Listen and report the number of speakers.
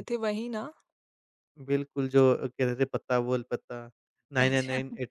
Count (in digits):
2